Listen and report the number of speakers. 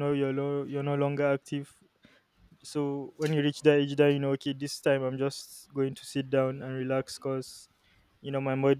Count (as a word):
one